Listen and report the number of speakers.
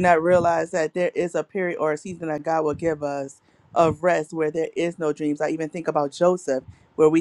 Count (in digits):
1